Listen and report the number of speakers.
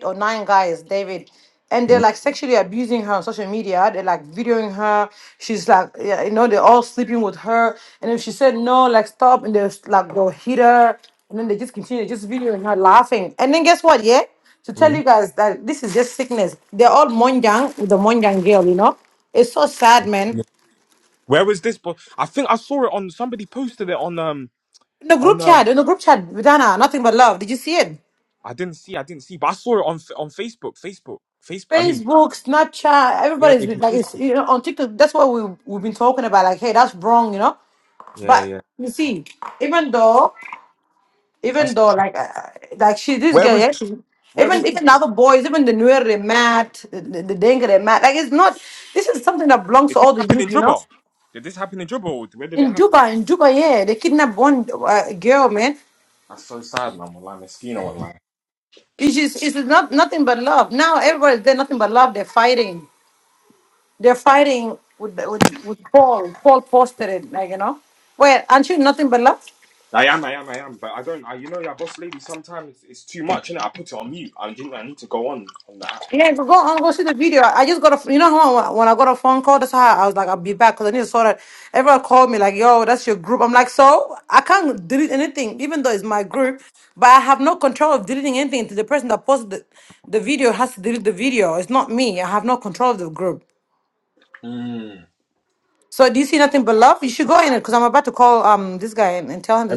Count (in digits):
2